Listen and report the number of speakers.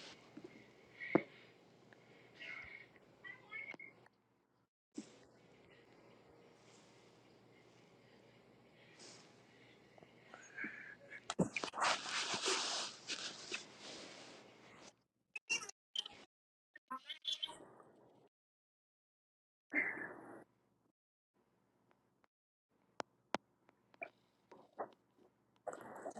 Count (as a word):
zero